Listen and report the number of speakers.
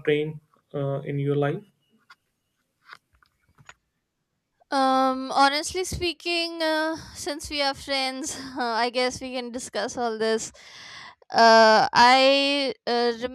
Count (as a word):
two